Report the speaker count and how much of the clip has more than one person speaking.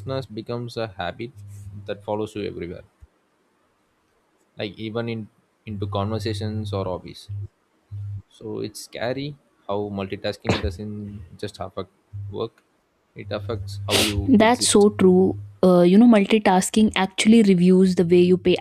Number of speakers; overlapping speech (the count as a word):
two, about 3%